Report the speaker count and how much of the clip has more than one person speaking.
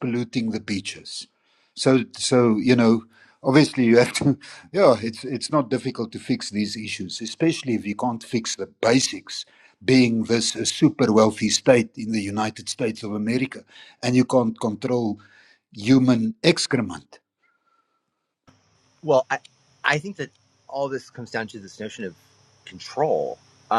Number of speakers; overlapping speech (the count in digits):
2, no overlap